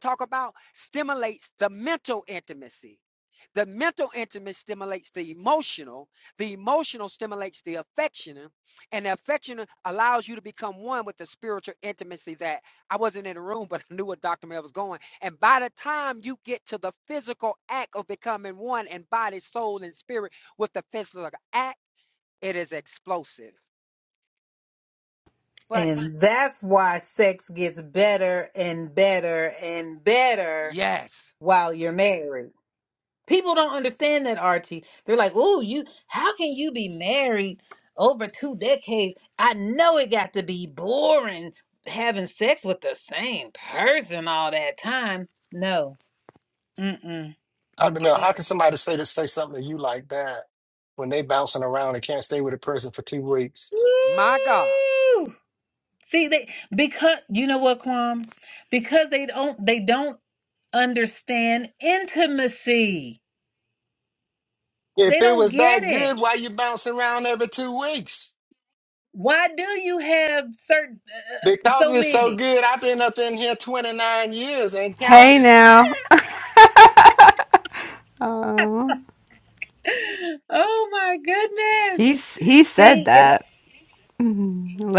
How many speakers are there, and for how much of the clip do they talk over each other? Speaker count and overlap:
four, about 4%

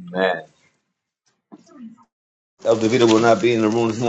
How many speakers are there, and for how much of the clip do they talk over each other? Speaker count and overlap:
one, no overlap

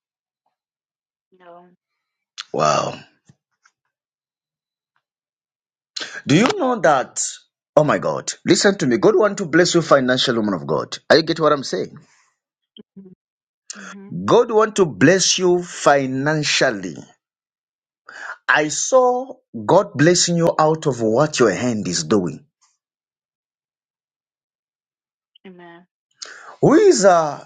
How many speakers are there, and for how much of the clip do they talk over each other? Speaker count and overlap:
two, no overlap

